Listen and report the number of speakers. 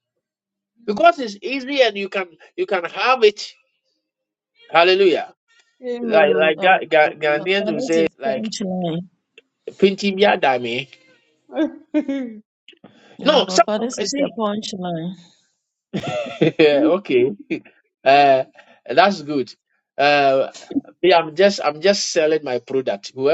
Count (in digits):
3